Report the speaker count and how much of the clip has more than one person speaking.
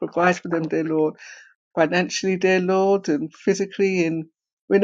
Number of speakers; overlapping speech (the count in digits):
1, no overlap